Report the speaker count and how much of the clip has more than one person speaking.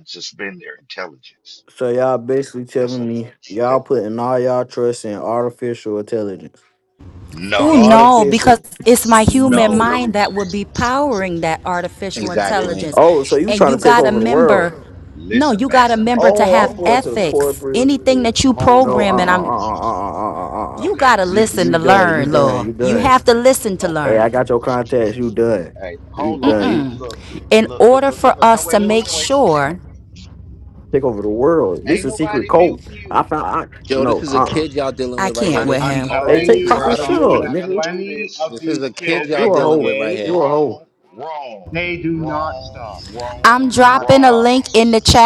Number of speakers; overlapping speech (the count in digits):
5, about 51%